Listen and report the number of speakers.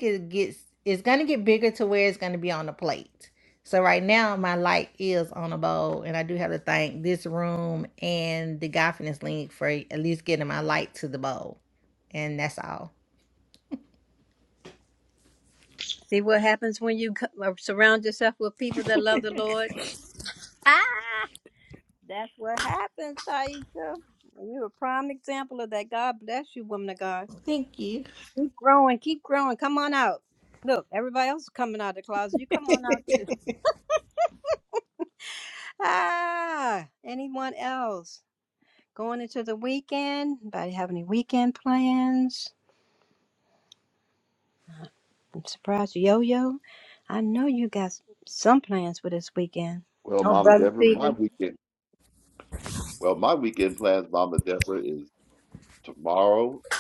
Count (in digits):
3